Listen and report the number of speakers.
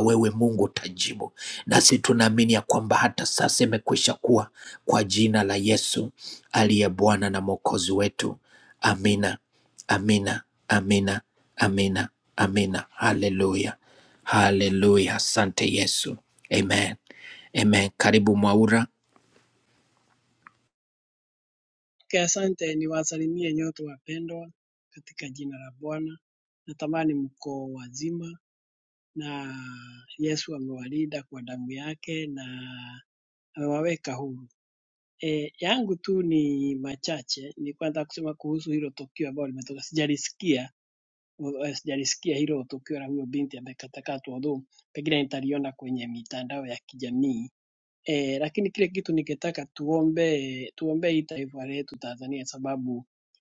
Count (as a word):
two